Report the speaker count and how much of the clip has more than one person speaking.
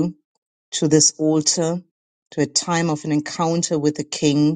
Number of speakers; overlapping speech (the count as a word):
one, no overlap